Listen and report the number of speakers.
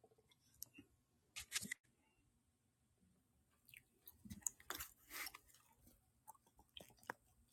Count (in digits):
0